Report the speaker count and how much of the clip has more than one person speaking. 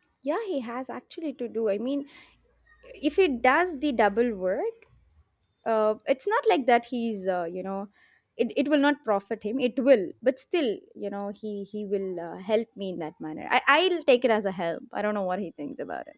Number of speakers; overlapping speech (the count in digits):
1, no overlap